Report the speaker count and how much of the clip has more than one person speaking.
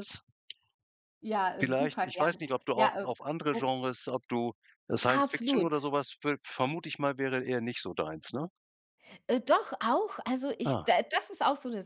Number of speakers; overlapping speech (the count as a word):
two, about 18%